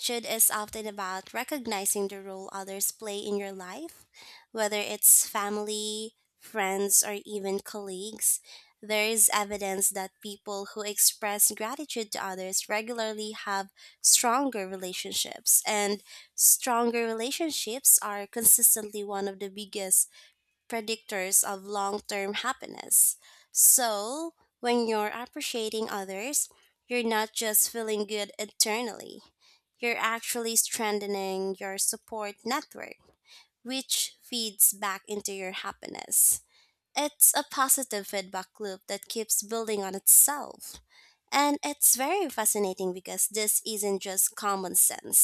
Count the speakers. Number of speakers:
1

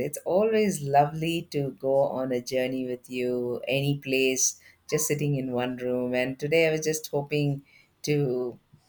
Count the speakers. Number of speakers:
1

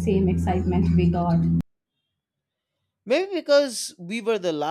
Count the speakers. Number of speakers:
2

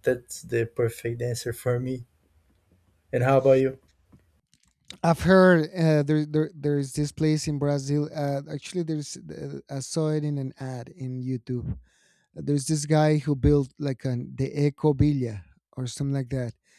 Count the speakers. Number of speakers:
2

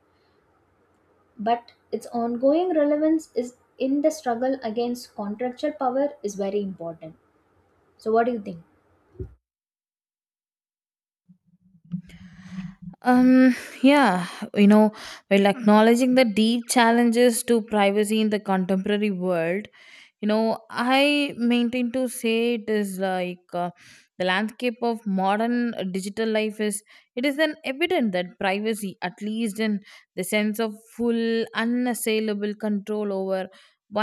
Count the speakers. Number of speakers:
2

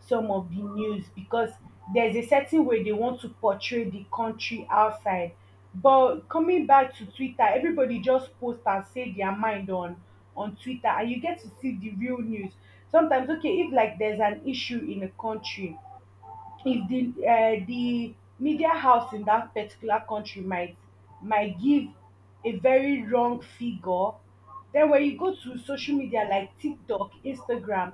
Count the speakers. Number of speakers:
1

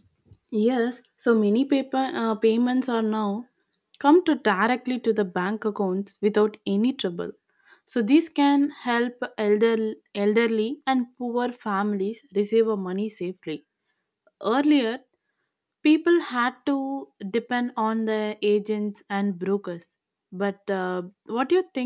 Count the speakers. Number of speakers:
1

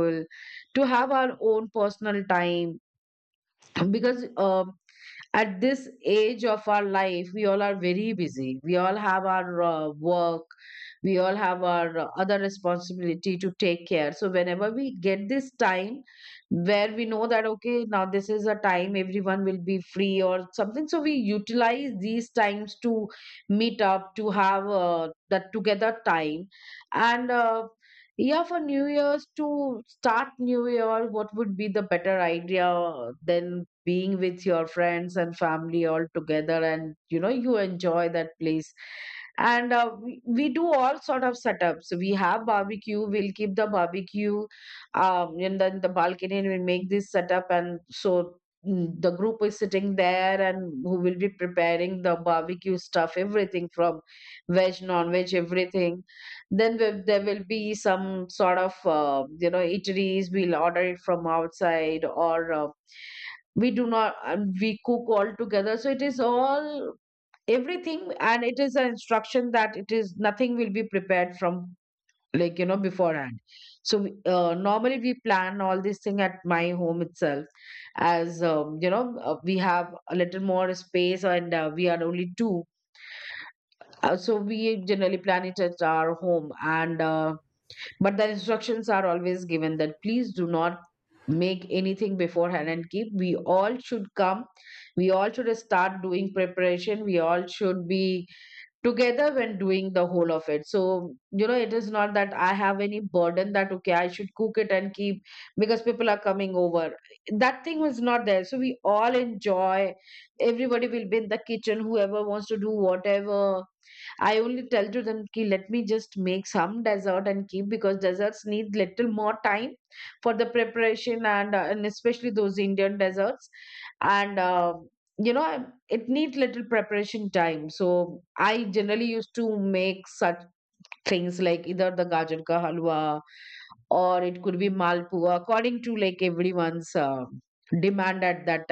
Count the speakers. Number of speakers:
1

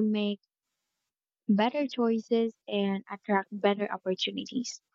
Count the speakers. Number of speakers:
1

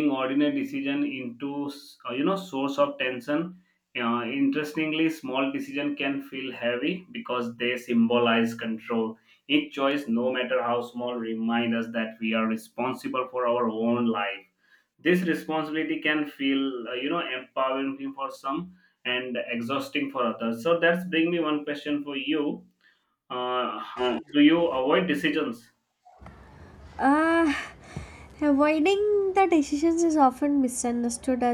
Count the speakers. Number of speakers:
2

